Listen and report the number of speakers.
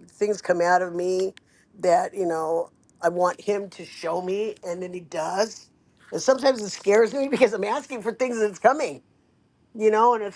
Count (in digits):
1